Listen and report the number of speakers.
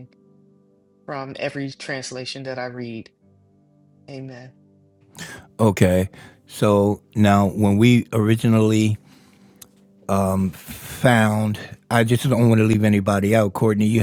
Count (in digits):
2